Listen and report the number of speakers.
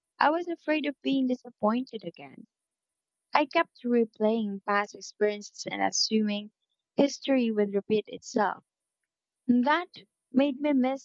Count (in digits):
1